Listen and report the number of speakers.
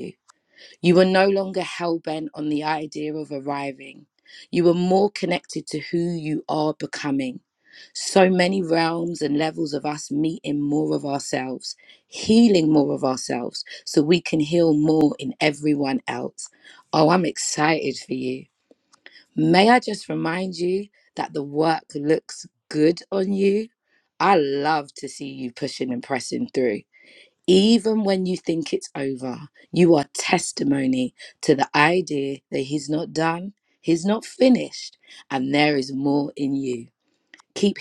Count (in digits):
1